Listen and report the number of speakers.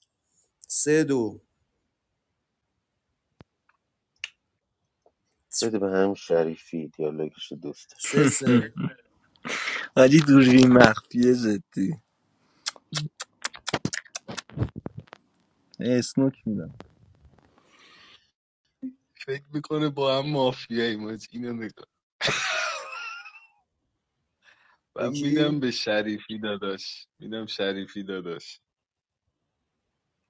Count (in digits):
4